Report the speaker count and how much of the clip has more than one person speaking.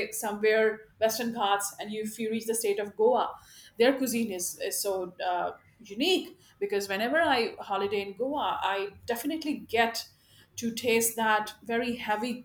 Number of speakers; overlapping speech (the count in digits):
1, no overlap